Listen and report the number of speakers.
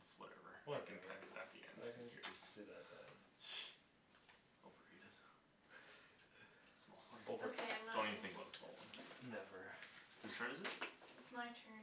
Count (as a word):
three